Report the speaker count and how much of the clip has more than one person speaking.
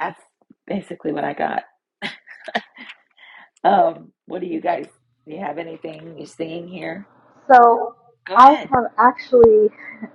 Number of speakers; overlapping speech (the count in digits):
2, about 4%